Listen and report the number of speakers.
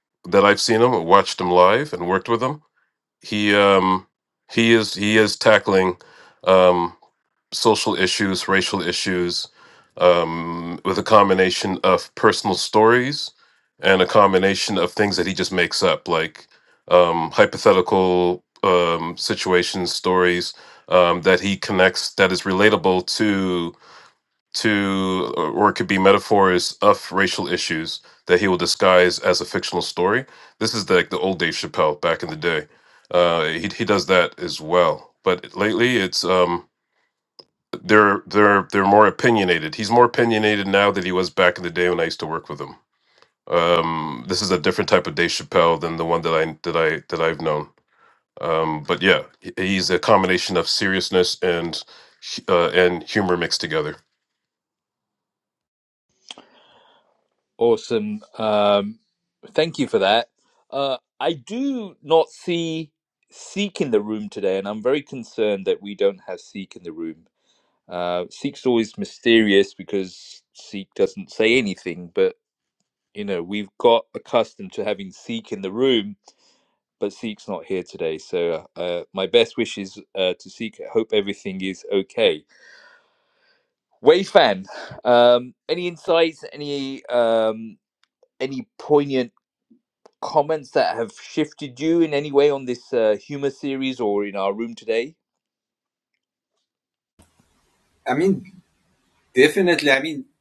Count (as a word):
three